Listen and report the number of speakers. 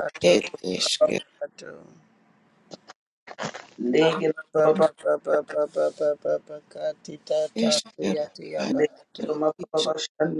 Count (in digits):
3